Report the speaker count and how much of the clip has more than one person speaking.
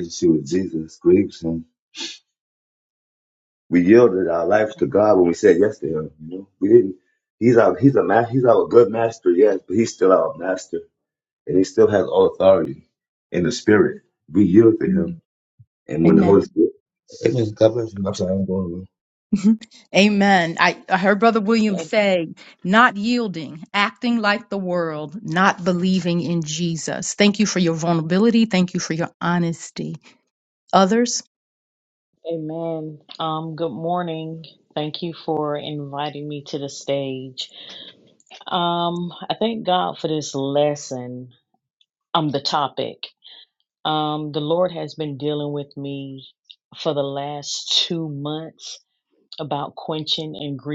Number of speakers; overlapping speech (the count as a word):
three, about 1%